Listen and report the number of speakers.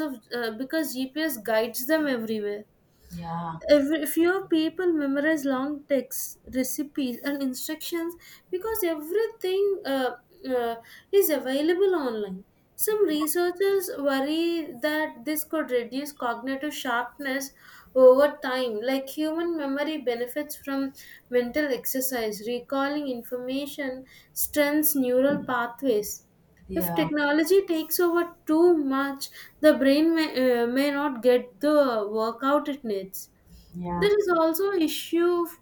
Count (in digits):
2